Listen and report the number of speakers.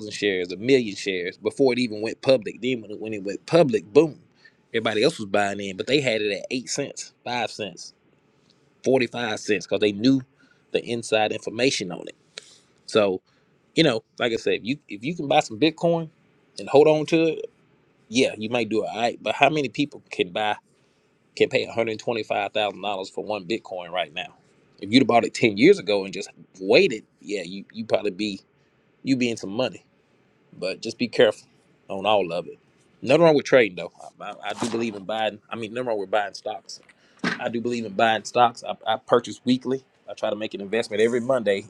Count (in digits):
1